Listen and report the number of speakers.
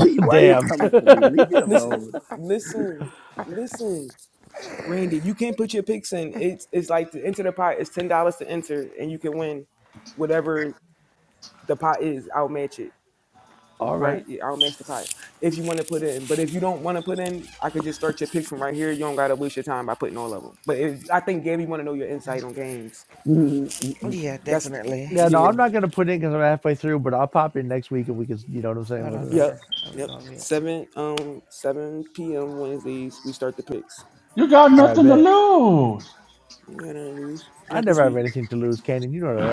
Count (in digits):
5